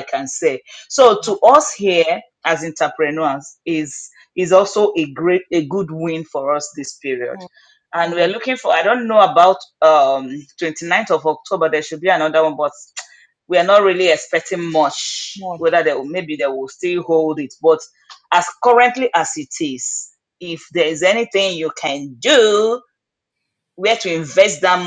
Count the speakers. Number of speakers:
1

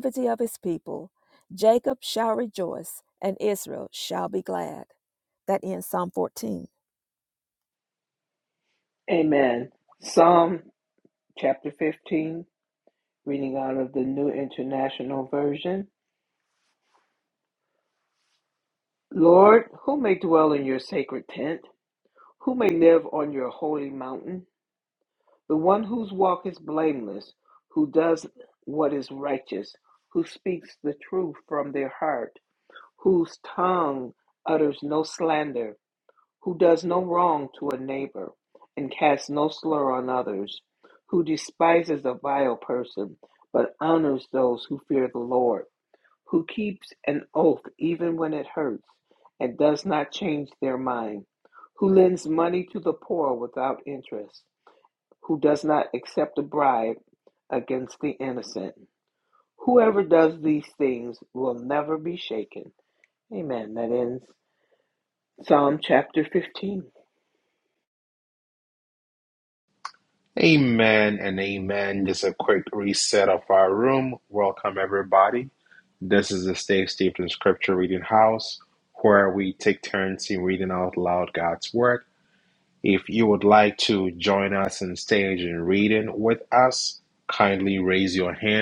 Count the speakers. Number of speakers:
3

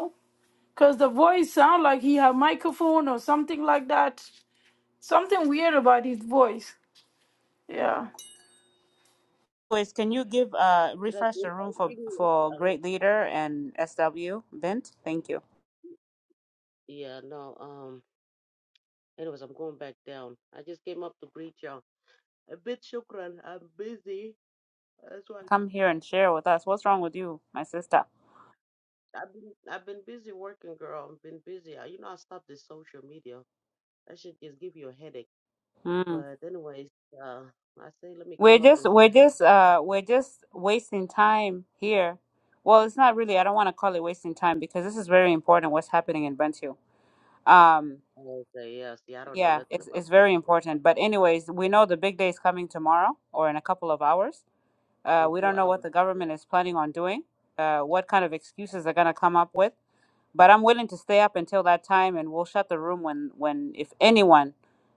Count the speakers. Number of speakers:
3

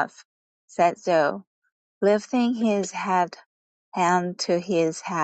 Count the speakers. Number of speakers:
1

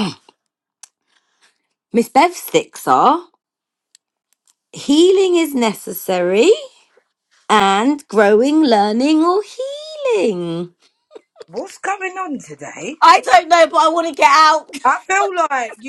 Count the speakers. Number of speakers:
2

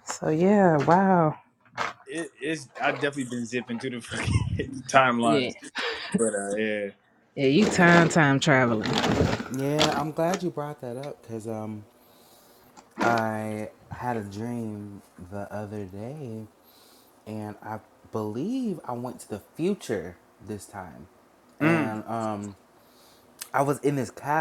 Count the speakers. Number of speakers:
3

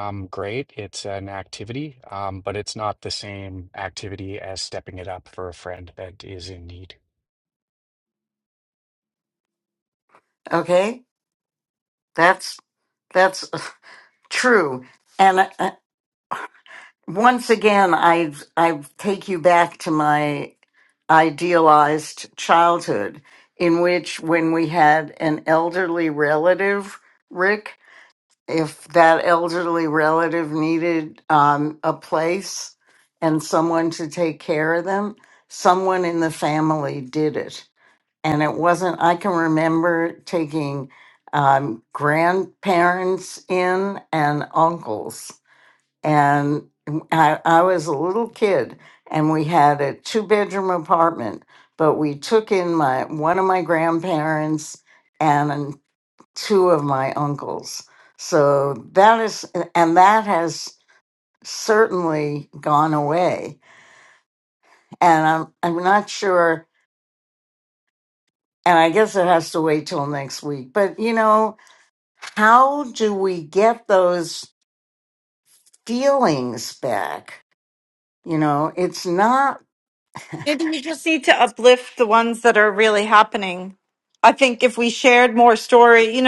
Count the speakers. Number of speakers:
3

